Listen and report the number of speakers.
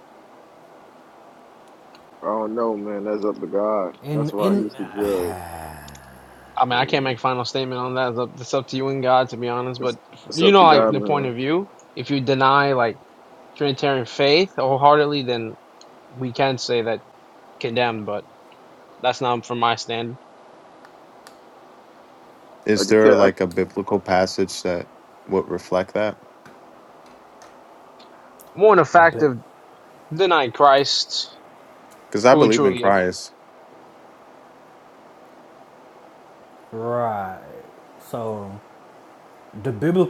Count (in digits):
4